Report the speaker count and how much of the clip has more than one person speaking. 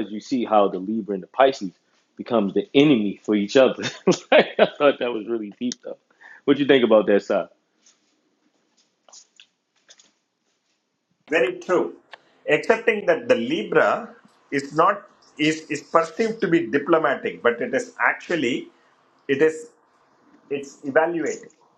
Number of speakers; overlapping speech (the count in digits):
2, no overlap